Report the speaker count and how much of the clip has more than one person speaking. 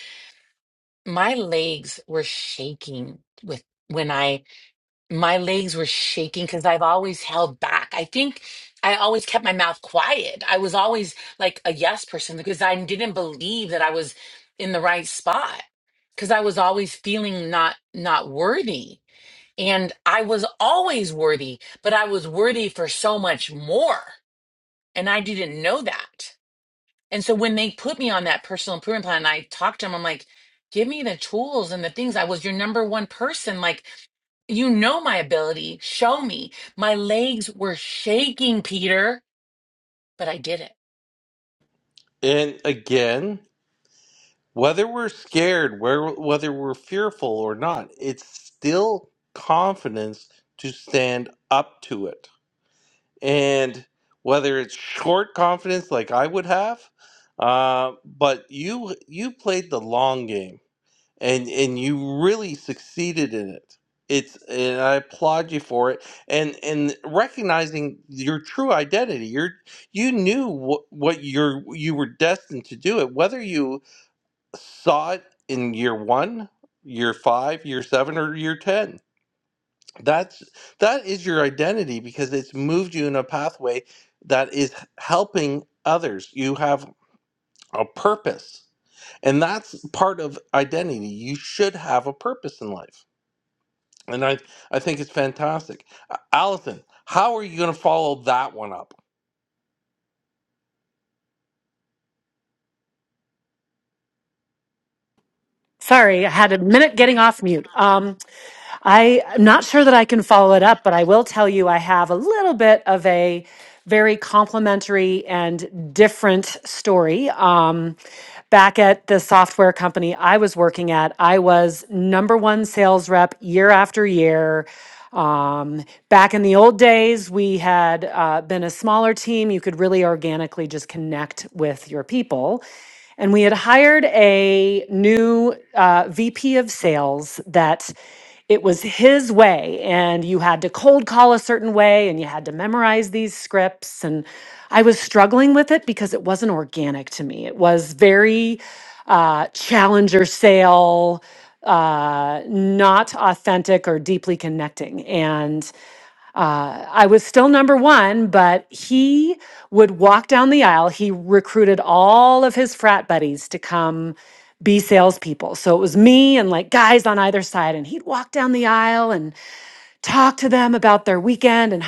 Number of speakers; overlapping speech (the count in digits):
3, no overlap